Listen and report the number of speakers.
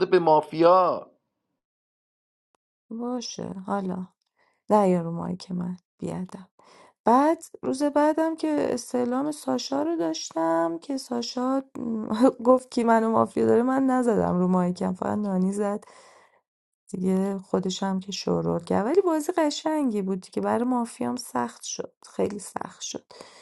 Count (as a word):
two